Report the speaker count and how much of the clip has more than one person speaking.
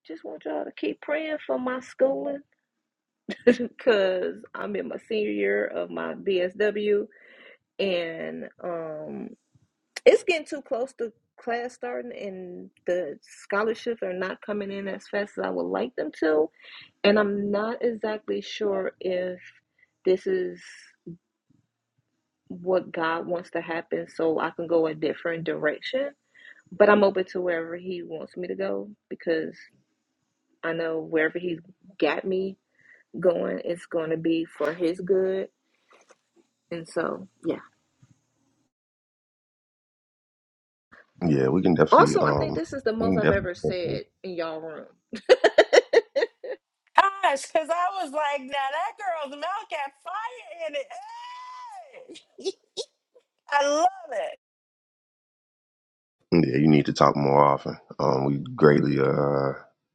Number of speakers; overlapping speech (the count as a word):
three, about 3%